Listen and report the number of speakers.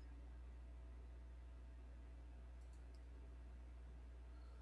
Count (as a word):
zero